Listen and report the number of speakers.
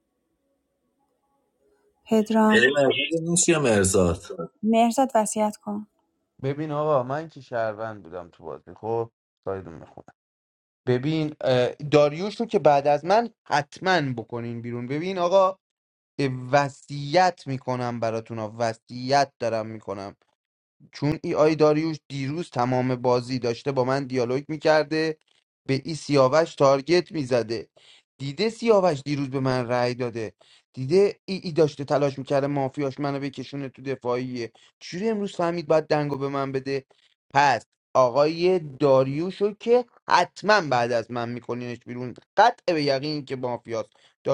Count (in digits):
3